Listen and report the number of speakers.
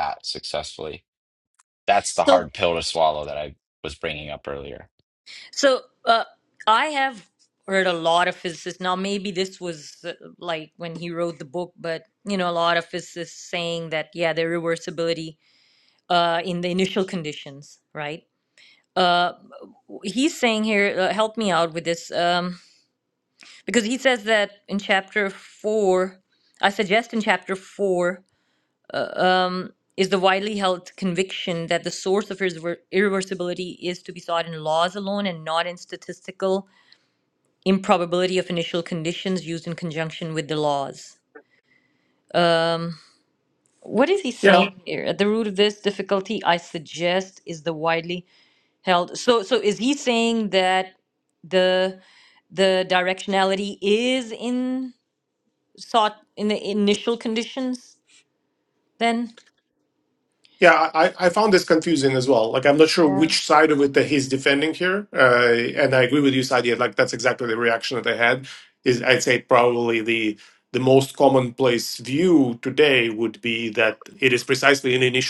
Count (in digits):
3